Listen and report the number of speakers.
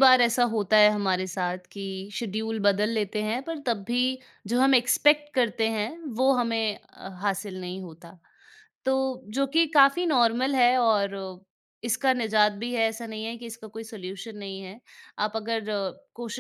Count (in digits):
1